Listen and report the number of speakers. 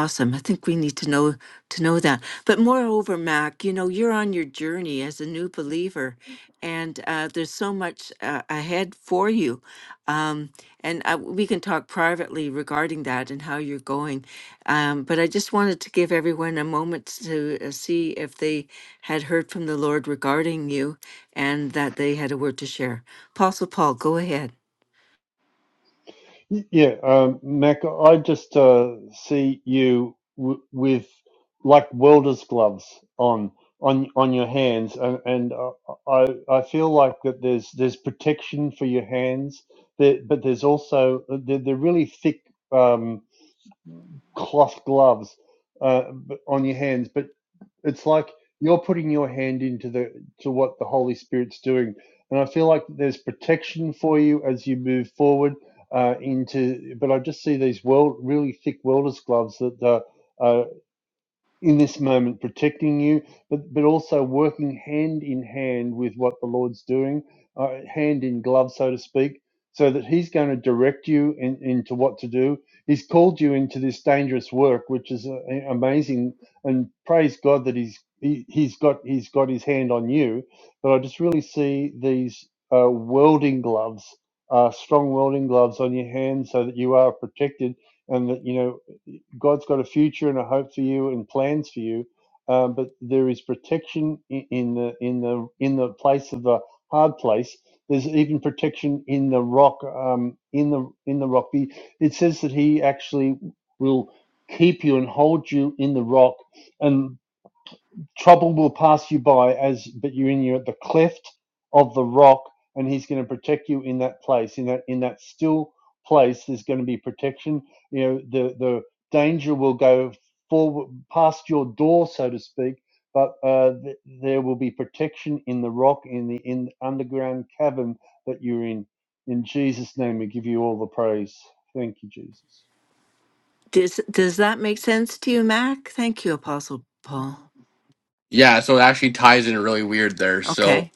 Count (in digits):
3